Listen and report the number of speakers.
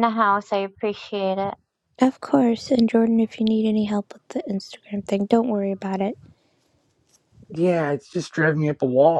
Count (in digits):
3